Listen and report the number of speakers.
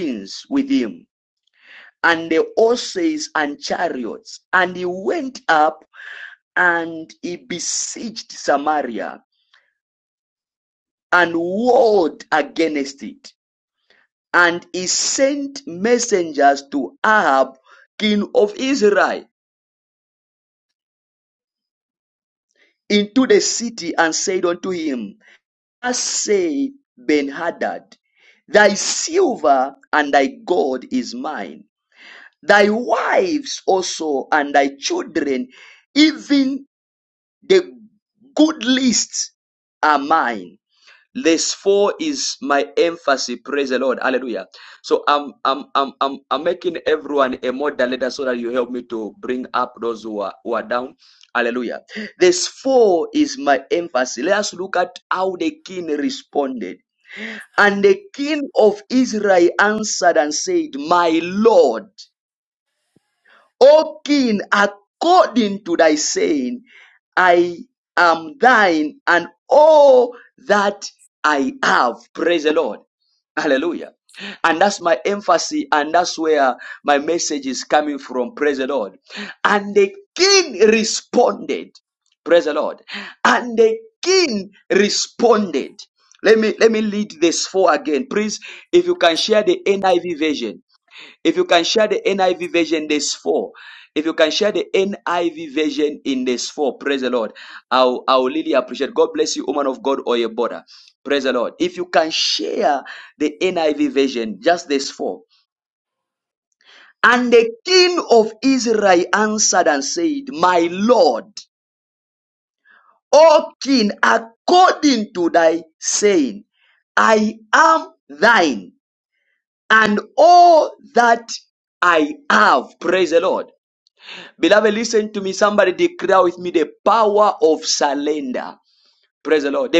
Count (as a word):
one